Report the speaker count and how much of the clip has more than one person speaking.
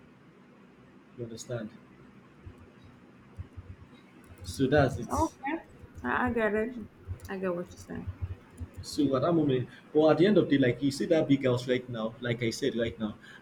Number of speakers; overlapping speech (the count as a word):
two, no overlap